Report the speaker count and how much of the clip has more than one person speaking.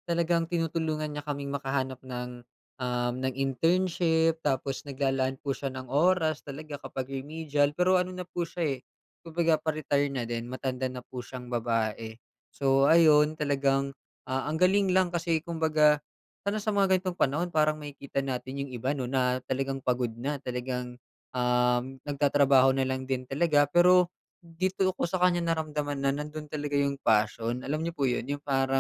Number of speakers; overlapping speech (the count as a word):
one, no overlap